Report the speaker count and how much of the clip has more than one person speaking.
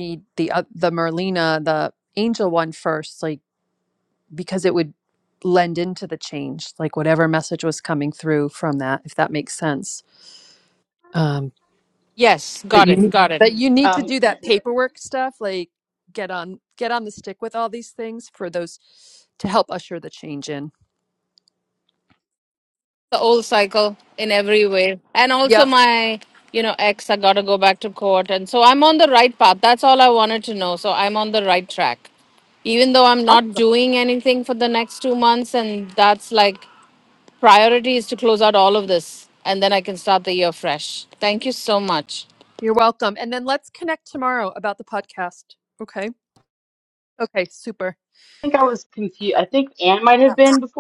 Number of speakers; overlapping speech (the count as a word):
three, about 3%